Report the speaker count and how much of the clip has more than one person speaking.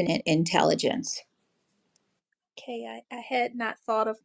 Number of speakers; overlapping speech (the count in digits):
2, no overlap